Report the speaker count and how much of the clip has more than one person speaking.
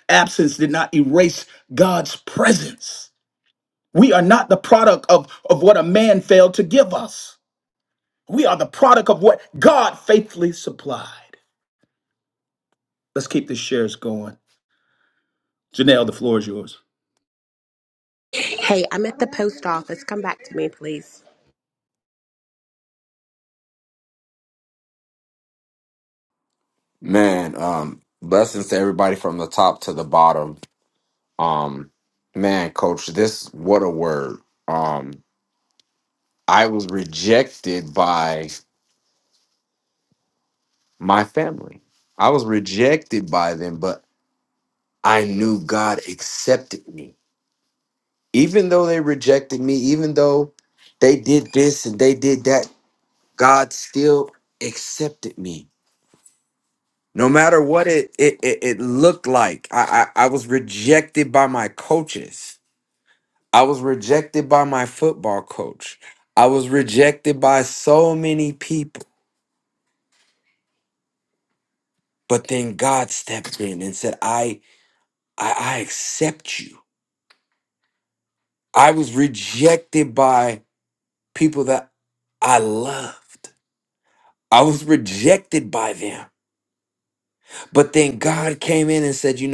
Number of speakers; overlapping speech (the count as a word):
three, no overlap